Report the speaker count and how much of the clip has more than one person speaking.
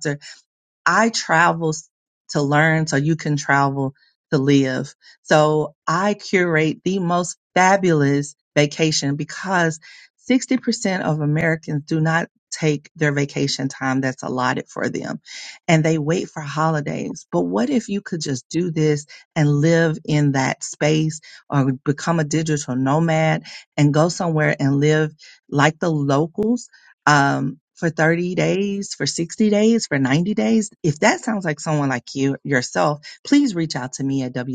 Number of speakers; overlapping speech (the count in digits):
1, no overlap